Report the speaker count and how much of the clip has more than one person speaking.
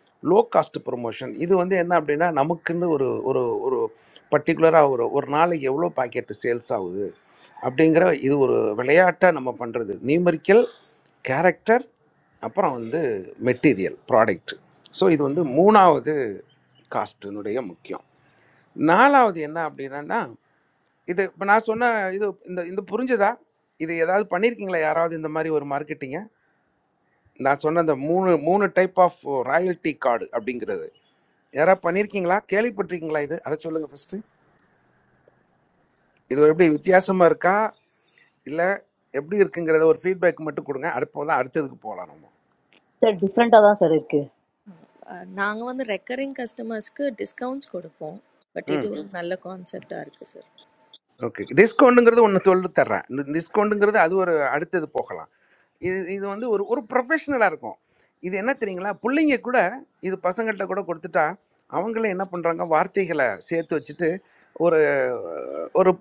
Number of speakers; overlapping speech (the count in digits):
3, under 1%